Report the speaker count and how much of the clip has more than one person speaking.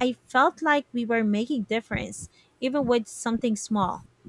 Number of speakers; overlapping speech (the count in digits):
1, no overlap